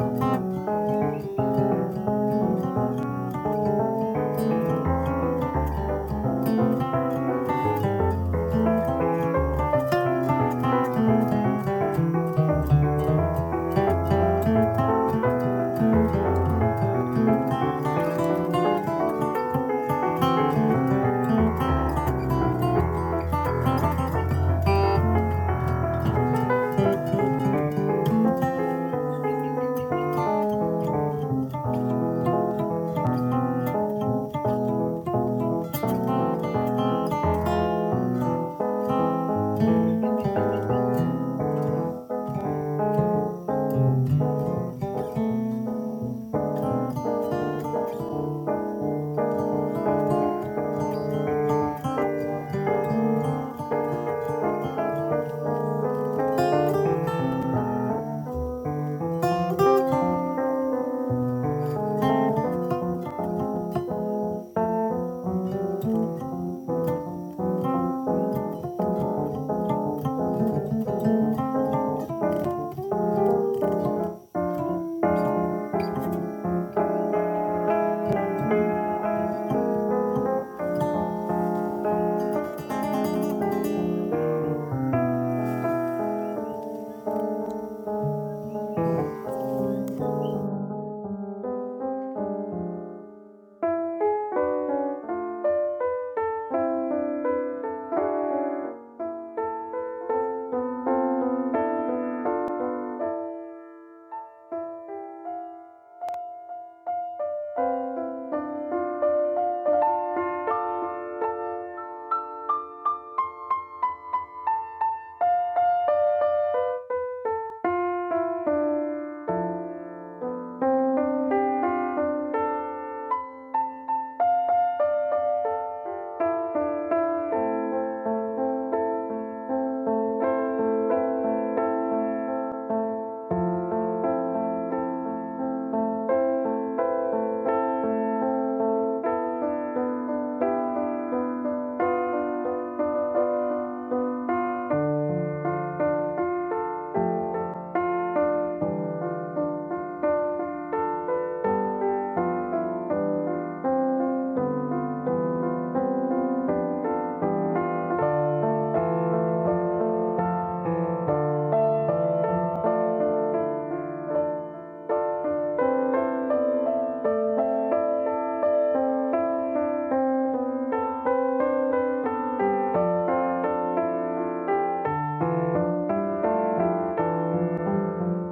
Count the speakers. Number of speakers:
0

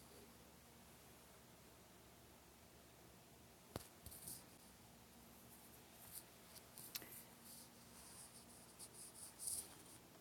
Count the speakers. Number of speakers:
0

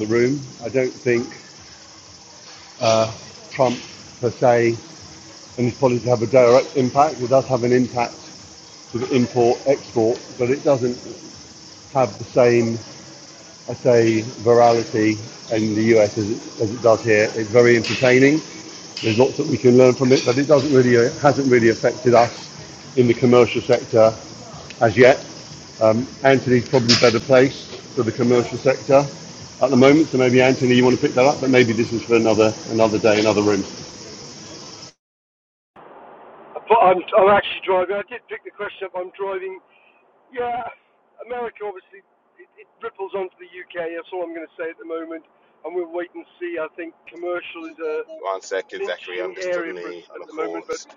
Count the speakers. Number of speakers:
3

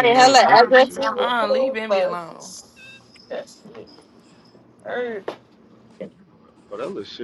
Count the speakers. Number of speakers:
3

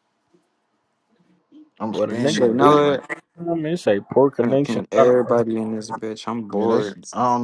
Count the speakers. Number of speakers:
3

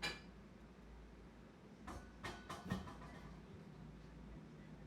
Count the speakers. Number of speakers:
0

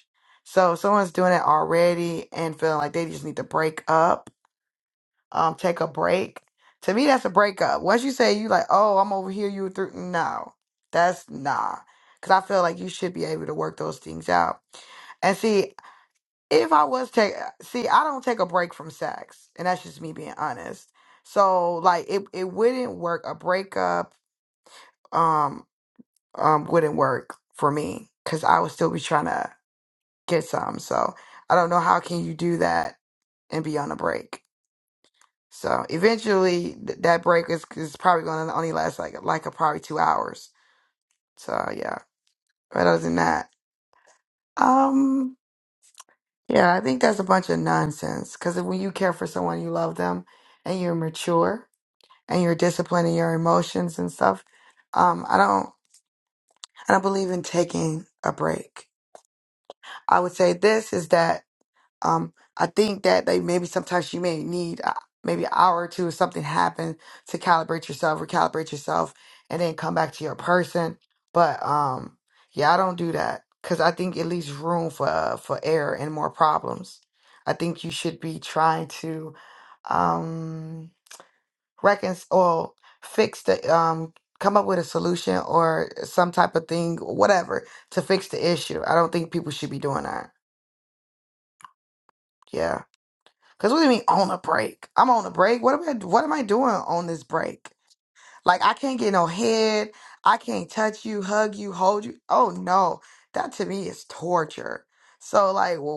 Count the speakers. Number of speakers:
1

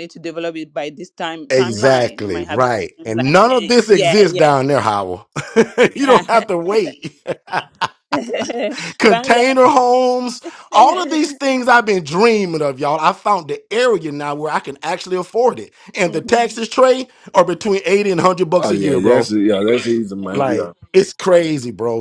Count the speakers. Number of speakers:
3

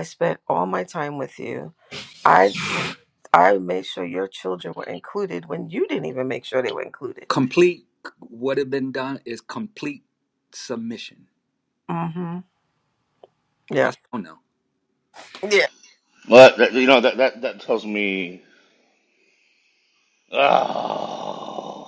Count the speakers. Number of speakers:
3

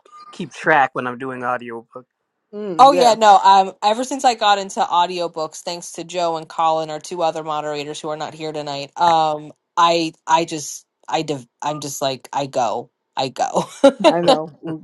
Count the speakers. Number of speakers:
3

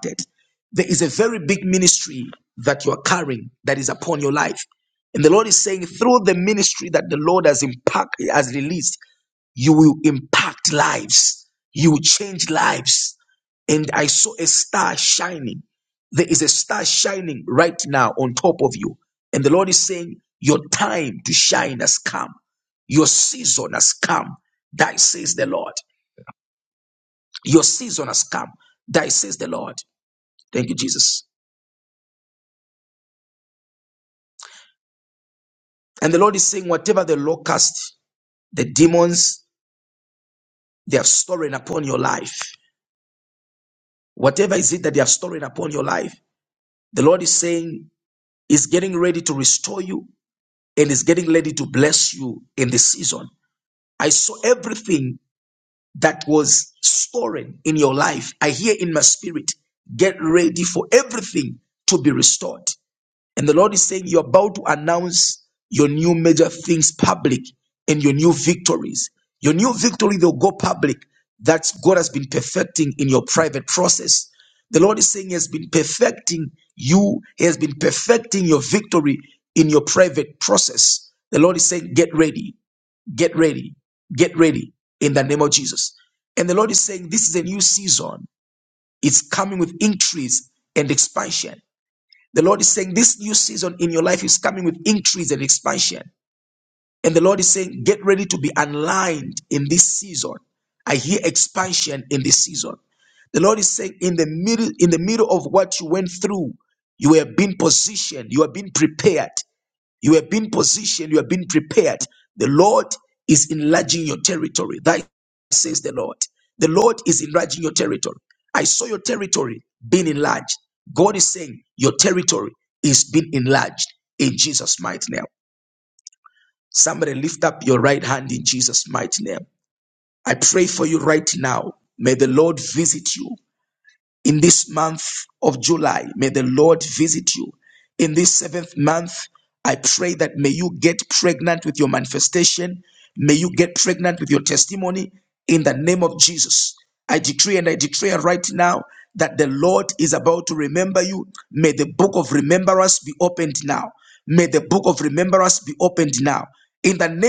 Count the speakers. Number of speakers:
1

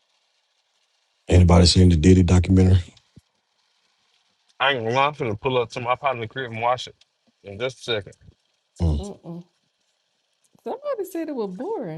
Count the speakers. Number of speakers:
3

